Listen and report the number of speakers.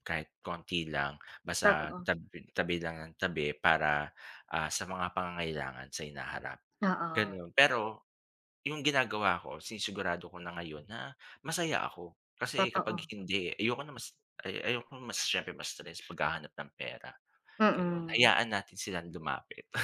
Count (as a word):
two